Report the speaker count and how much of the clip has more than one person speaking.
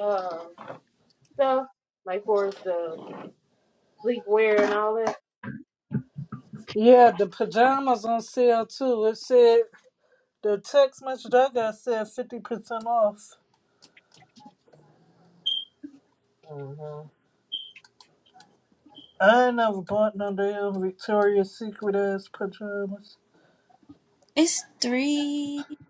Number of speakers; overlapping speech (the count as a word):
three, no overlap